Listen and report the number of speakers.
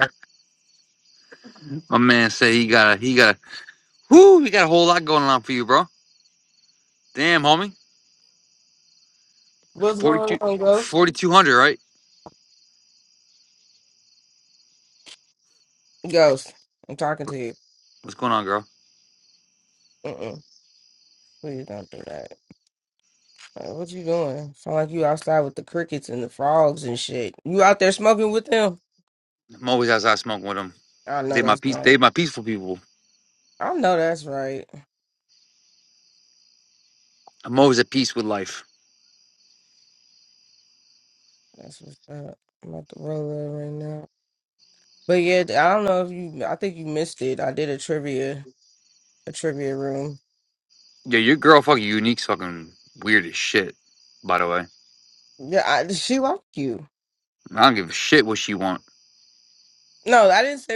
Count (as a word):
two